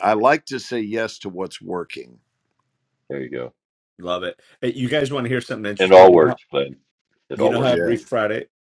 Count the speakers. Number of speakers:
three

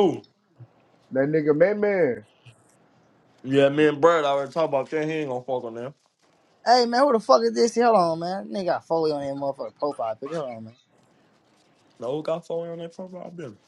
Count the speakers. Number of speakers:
three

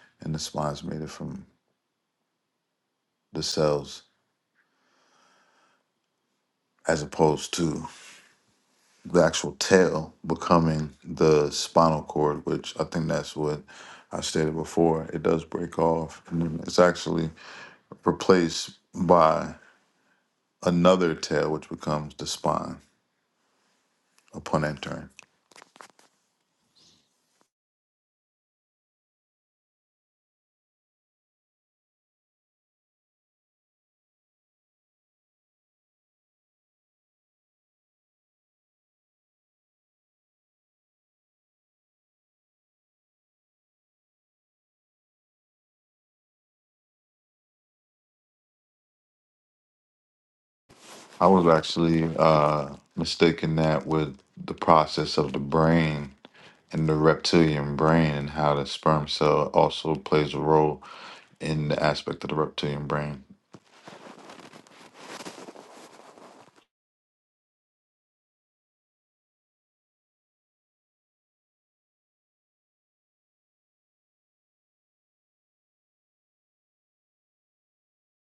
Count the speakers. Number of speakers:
one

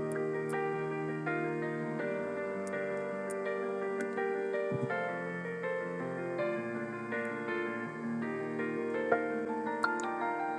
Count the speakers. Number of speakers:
zero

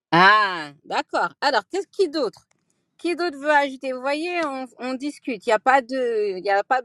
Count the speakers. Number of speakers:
one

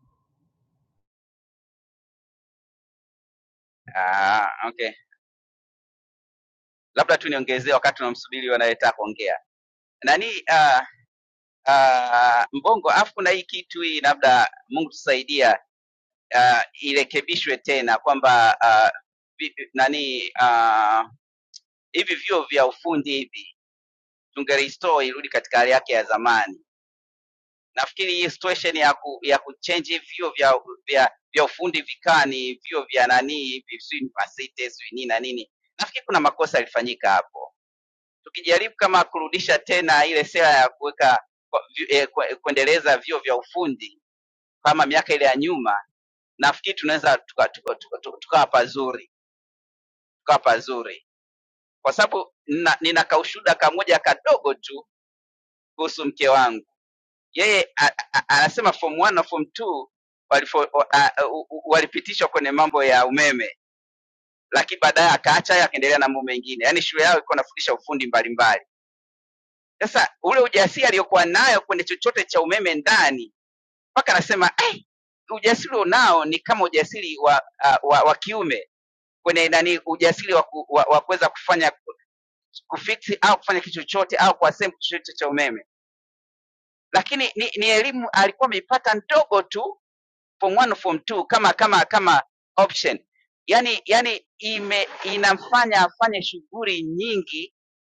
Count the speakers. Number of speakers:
one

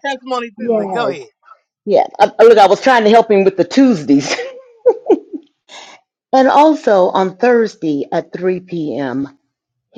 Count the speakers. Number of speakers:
two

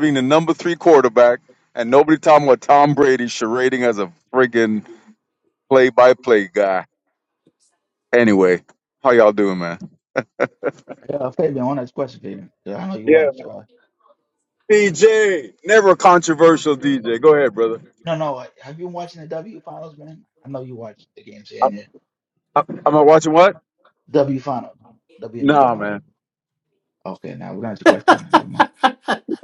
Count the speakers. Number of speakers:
two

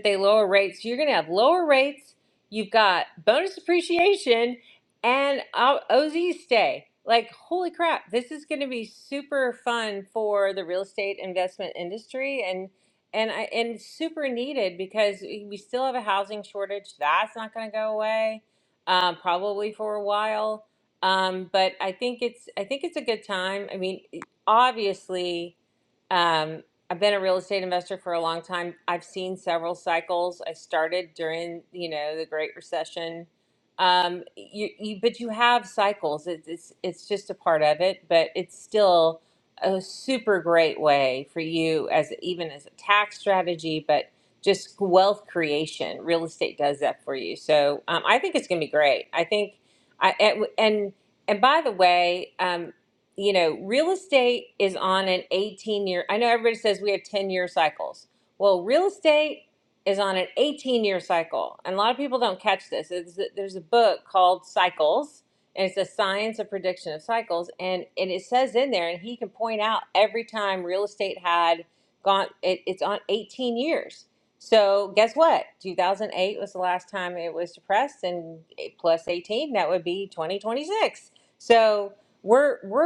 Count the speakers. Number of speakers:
one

